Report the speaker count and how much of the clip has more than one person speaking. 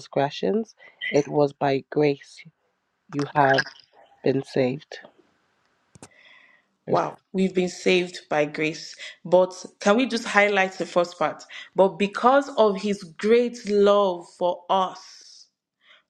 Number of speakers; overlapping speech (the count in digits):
2, about 1%